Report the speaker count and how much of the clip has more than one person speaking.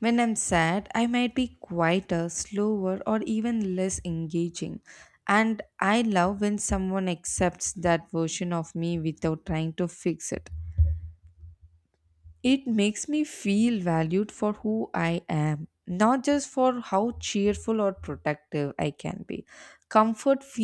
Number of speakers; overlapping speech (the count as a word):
one, no overlap